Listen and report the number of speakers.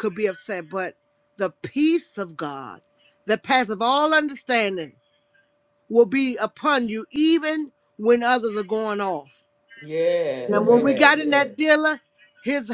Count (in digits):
2